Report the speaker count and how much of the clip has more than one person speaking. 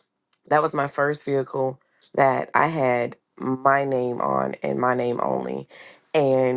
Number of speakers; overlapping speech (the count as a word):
one, no overlap